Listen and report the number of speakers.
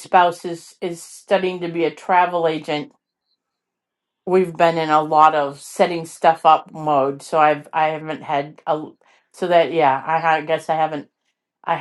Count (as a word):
one